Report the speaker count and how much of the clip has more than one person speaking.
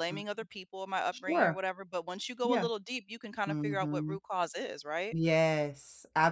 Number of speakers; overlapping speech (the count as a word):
two, about 24%